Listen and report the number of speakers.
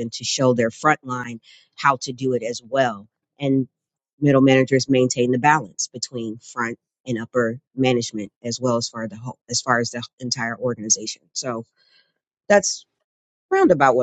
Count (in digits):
1